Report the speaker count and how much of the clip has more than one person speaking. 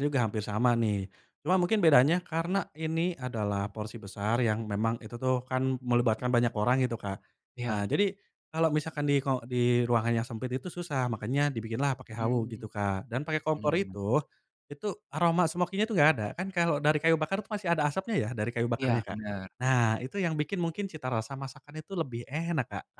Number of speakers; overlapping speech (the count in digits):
2, about 6%